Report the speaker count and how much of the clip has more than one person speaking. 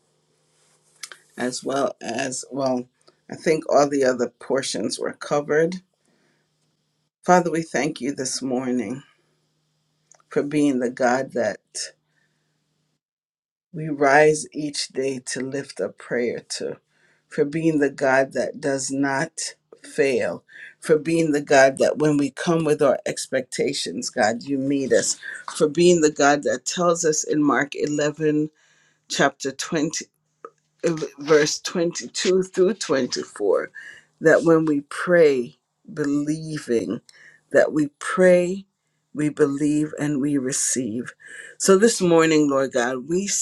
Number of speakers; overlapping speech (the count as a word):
one, no overlap